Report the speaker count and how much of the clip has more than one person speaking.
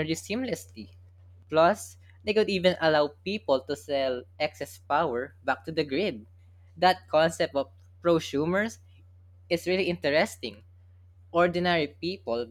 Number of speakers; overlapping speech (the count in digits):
1, no overlap